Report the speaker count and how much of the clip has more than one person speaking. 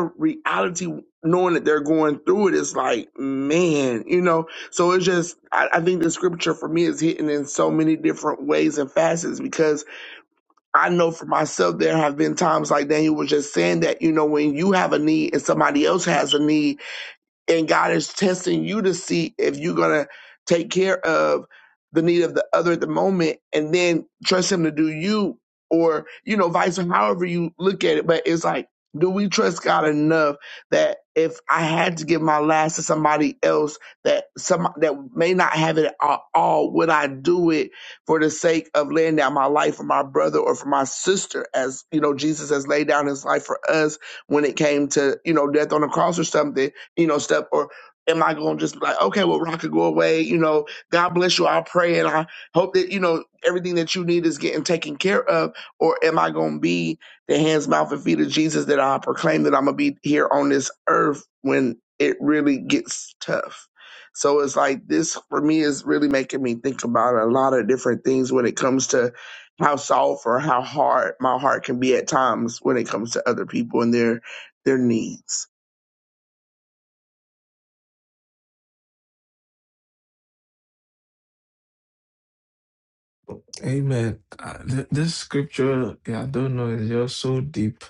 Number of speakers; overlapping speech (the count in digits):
2, no overlap